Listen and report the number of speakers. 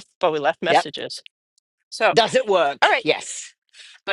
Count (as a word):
two